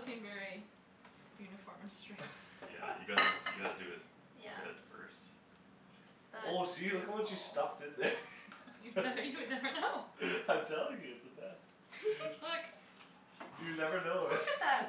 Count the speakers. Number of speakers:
4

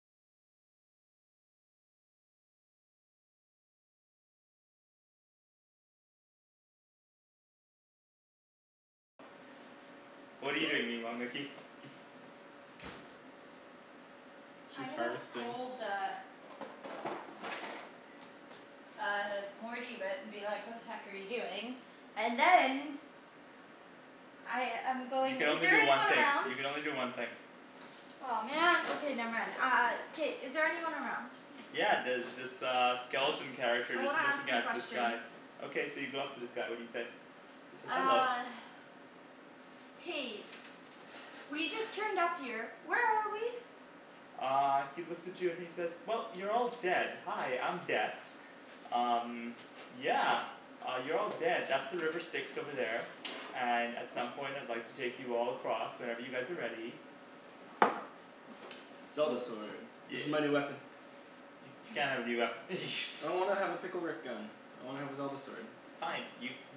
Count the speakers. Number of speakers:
3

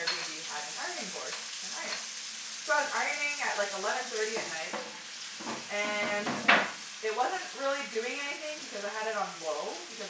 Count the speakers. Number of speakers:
1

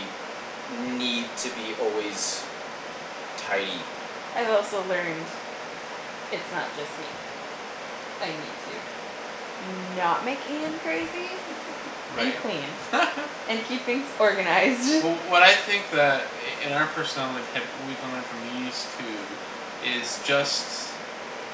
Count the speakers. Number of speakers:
3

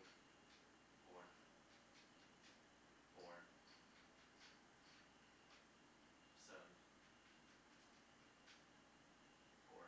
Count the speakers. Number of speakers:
1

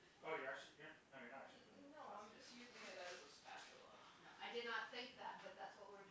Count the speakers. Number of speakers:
3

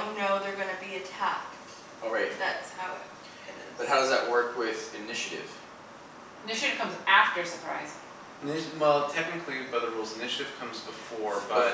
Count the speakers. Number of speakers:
4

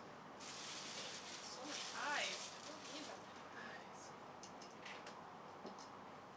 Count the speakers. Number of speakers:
1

